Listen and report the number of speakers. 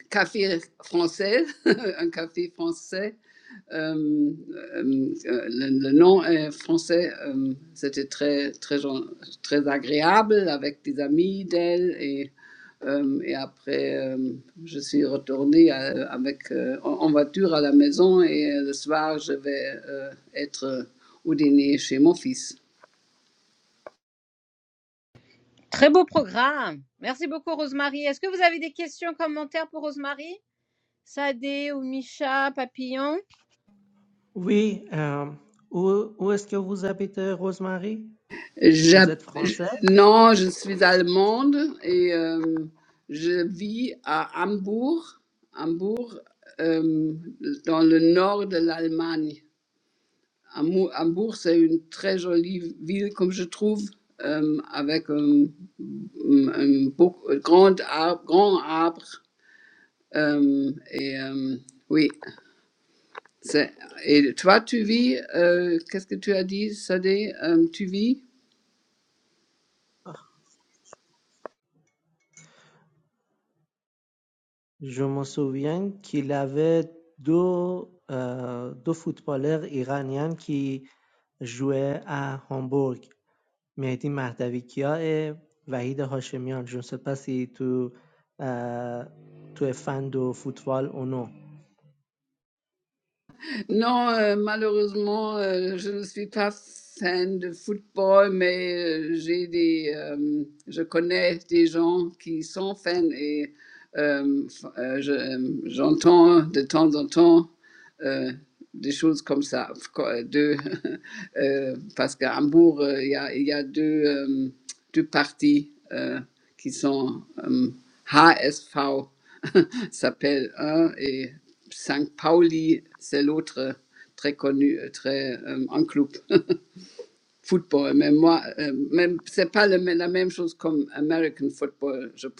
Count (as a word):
three